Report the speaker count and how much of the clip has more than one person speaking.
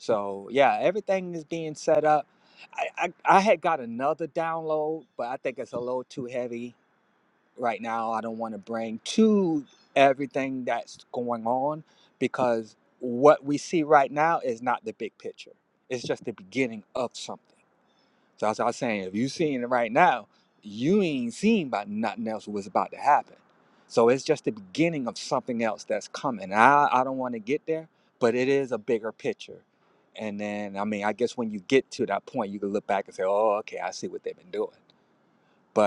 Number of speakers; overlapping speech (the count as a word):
one, no overlap